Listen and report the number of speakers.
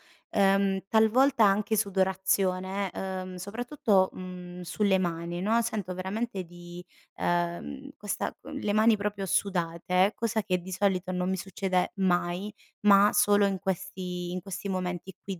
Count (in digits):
1